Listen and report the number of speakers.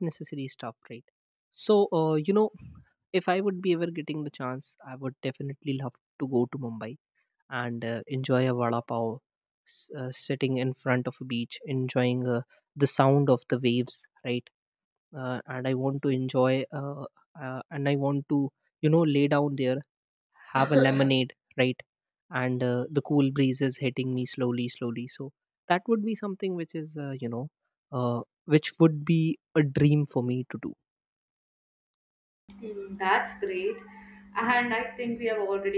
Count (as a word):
two